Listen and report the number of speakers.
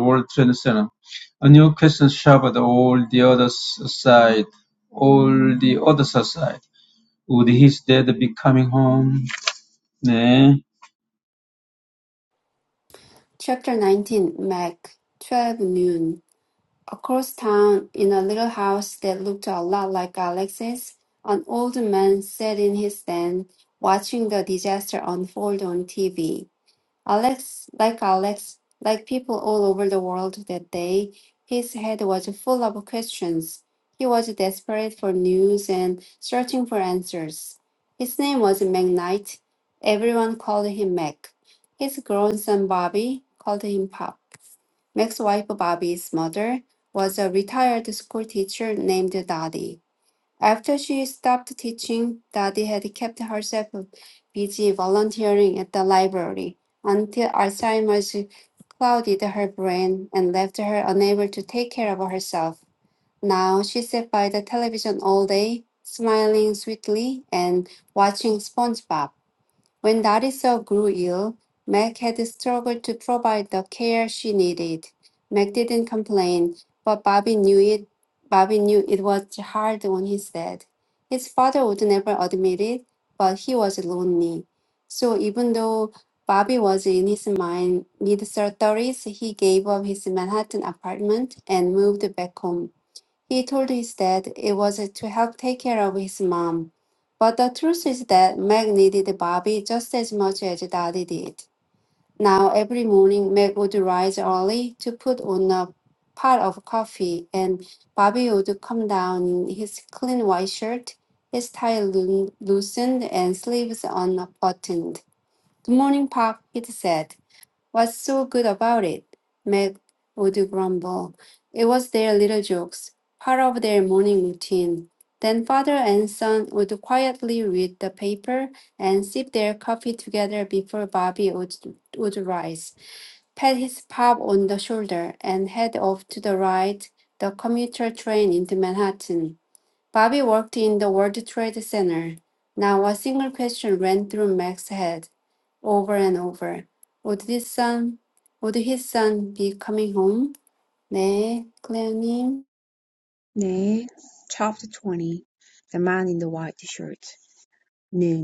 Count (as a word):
three